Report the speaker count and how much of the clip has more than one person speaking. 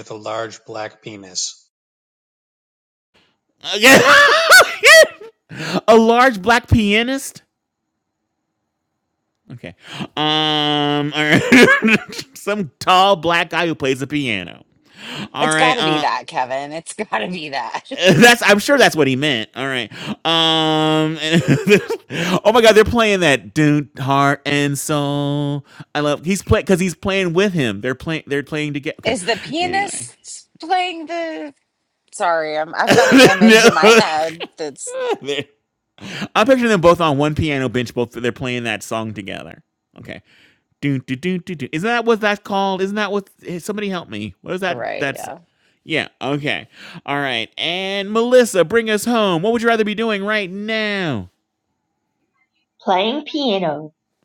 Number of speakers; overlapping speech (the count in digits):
4, about 4%